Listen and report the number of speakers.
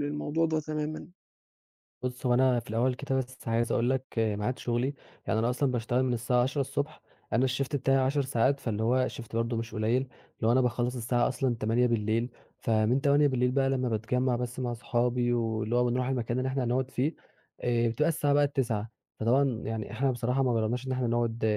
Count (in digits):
2